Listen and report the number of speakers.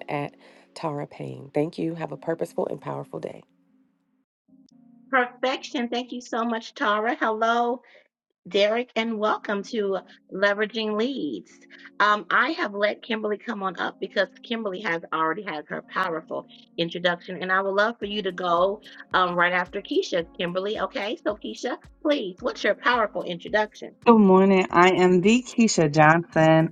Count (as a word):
three